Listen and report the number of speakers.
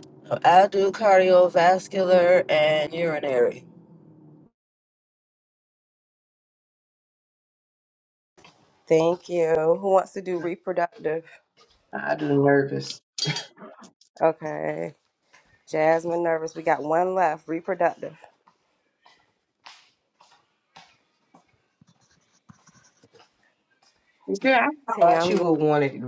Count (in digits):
3